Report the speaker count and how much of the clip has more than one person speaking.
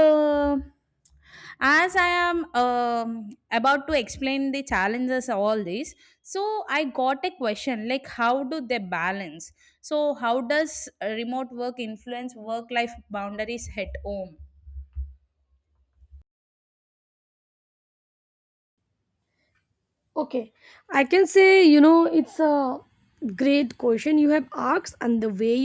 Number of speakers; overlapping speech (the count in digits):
2, no overlap